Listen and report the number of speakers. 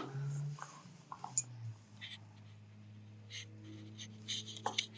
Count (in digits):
0